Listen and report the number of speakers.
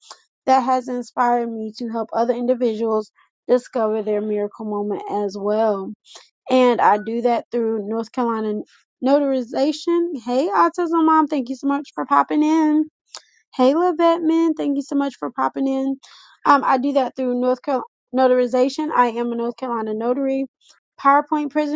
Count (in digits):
1